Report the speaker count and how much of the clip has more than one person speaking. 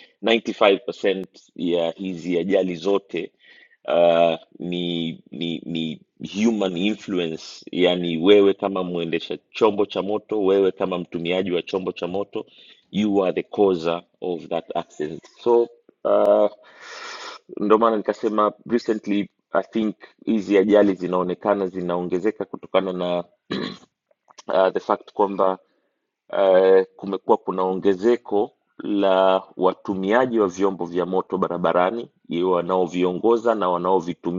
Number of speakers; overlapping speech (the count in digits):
1, no overlap